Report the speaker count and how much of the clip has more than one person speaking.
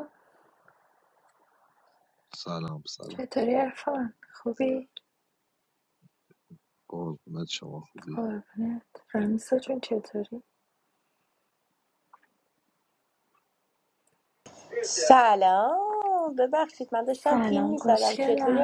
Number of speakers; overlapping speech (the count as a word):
three, about 8%